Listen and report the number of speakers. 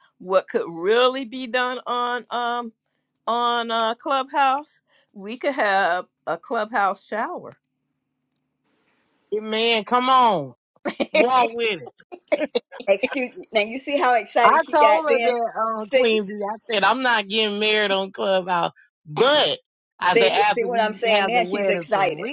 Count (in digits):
3